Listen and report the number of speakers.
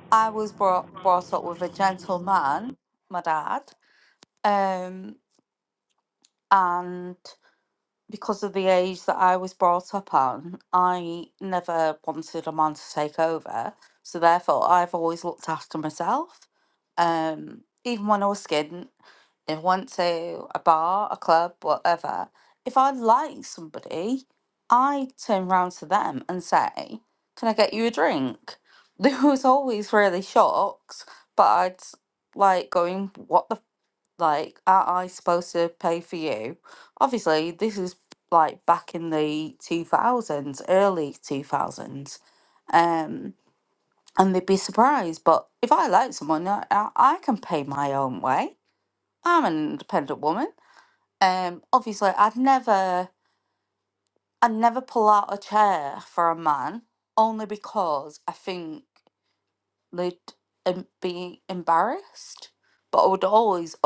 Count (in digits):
1